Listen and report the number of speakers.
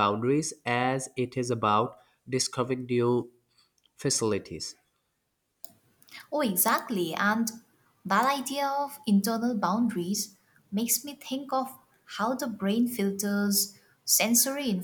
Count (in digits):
2